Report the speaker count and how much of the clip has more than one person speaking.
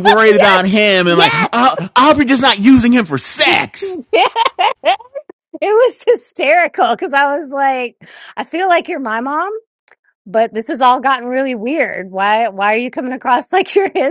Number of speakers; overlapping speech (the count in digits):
2, about 7%